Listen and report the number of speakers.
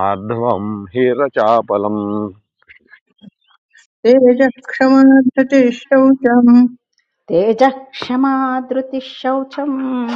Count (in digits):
3